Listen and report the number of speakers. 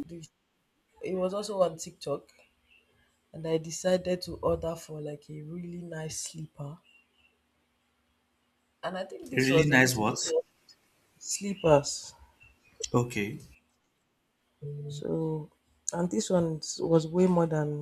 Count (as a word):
two